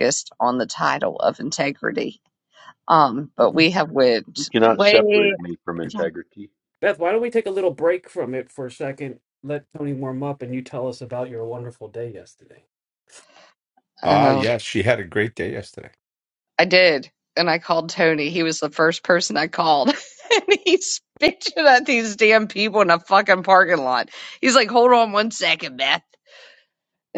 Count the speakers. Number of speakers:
4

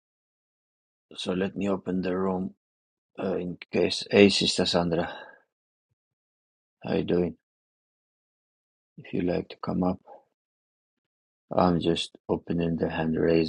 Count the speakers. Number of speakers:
1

